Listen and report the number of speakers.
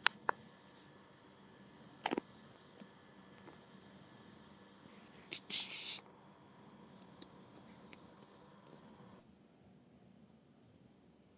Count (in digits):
0